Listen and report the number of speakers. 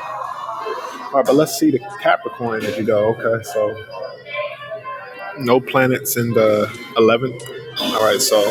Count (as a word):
one